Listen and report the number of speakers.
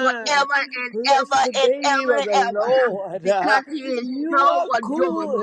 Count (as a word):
two